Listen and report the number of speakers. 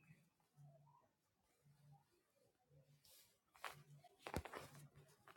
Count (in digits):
0